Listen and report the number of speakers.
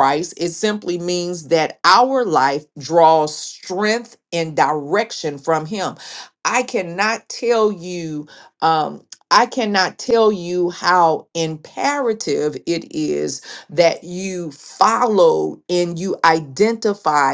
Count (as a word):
one